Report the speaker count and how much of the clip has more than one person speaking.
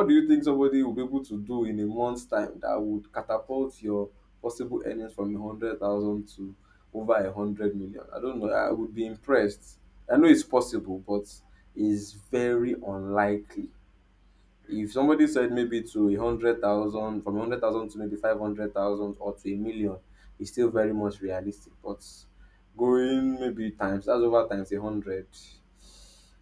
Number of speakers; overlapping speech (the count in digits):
1, no overlap